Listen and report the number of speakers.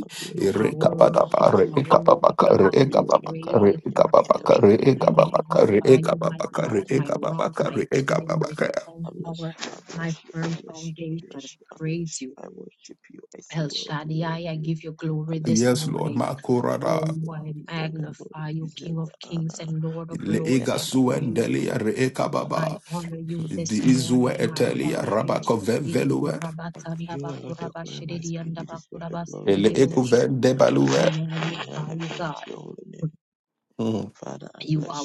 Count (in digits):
3